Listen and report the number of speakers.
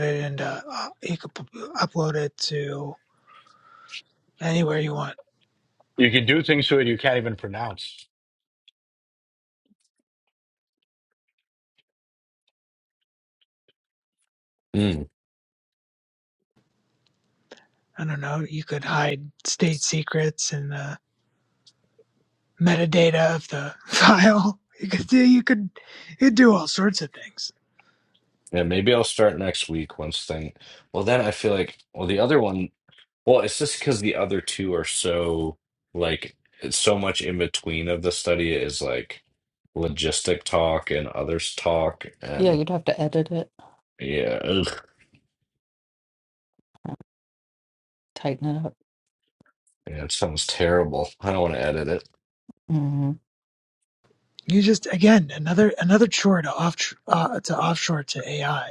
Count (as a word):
four